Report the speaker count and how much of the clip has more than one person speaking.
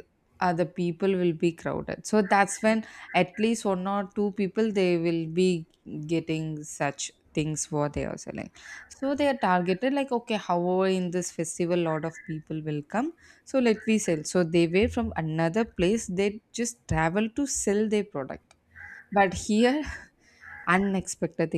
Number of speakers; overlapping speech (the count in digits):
1, no overlap